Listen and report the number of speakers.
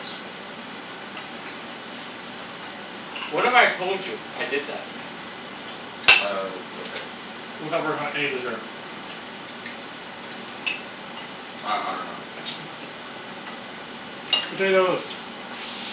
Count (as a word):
three